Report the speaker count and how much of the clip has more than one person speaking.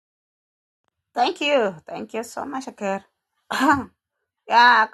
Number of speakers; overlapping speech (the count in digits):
1, no overlap